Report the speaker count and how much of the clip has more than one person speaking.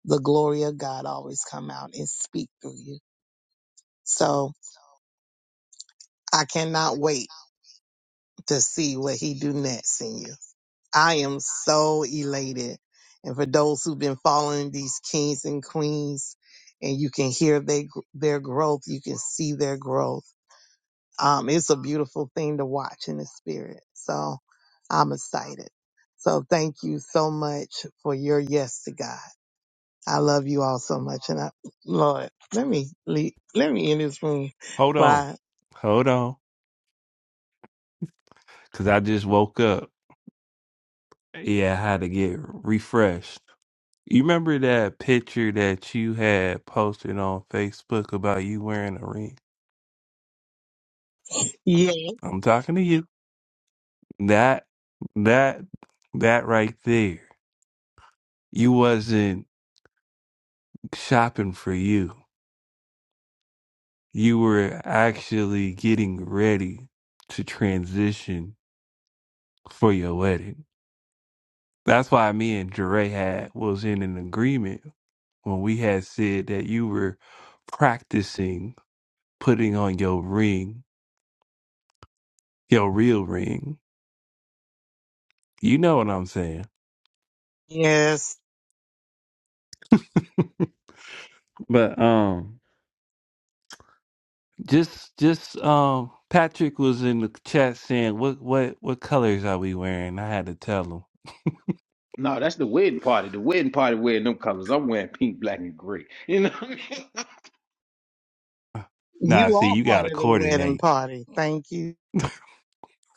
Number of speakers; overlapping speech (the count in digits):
3, about 2%